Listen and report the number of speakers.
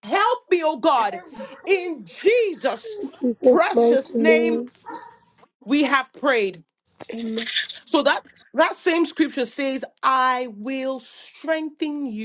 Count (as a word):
two